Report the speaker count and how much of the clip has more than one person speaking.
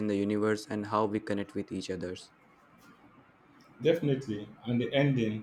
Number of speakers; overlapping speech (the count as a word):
two, no overlap